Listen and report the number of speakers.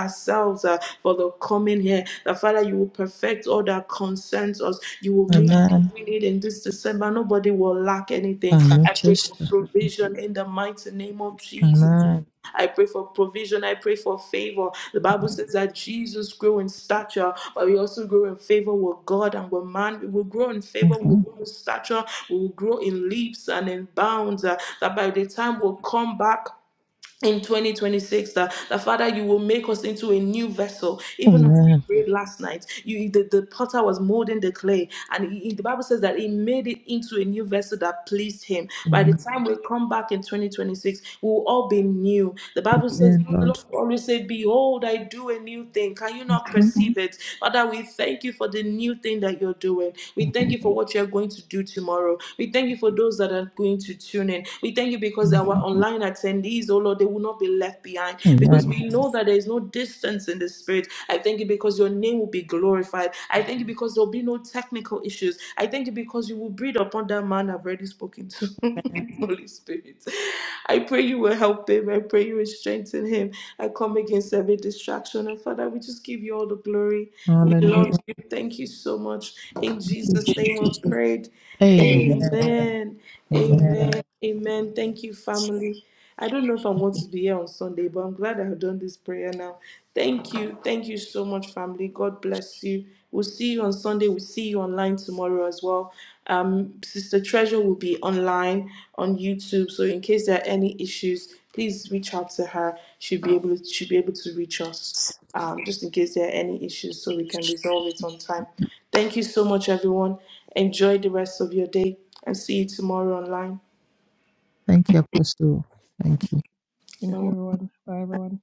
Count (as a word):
three